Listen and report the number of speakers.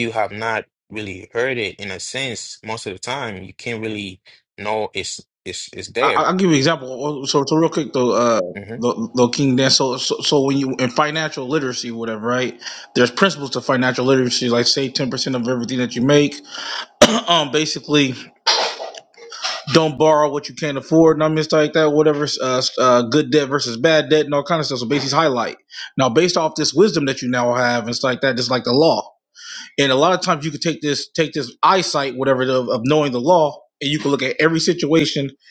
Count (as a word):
two